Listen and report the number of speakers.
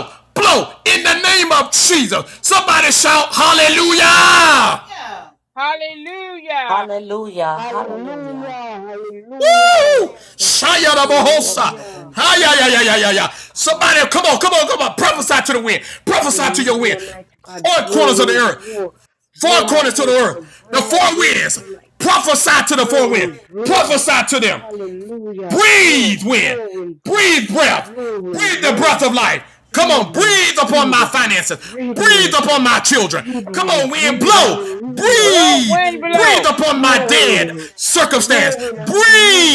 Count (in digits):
4